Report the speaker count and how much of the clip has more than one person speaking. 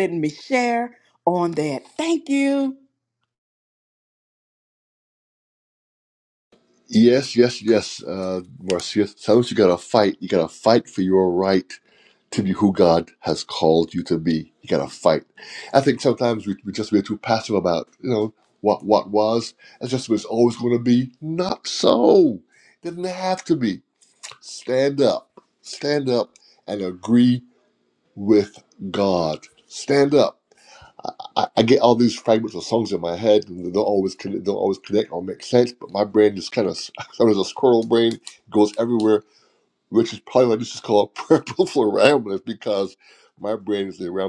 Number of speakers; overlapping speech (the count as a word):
two, no overlap